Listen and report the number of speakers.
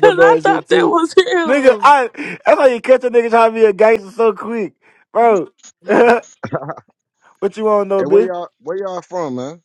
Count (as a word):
three